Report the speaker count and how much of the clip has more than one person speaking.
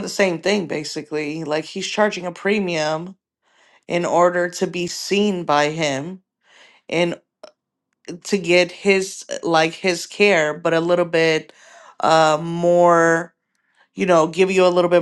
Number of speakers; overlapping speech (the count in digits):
1, no overlap